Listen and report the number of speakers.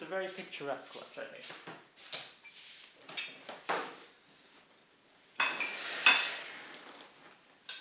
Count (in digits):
1